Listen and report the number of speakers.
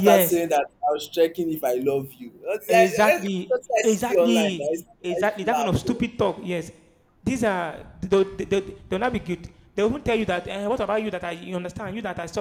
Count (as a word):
two